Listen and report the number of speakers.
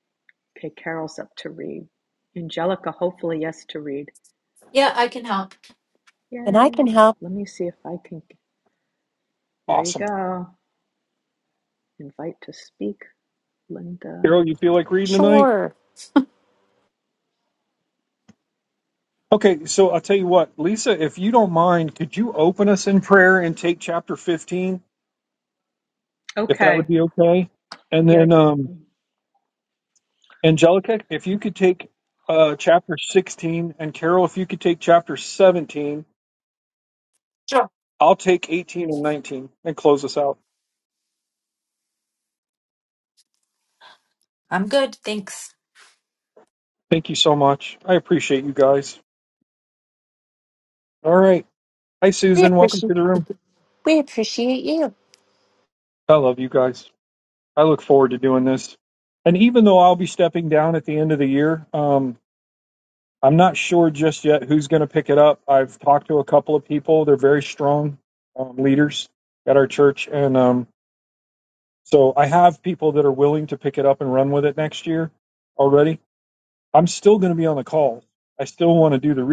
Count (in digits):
4